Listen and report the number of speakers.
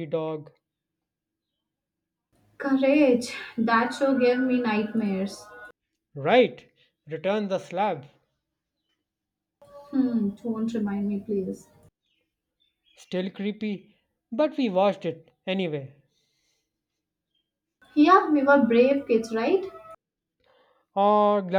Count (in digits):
2